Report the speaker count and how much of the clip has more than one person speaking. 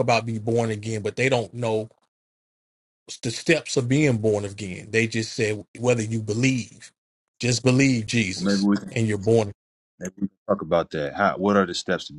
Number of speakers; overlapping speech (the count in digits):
2, about 4%